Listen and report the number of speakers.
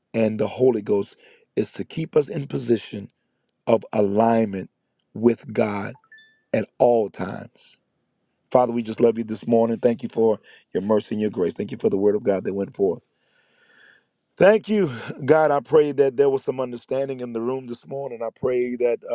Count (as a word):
one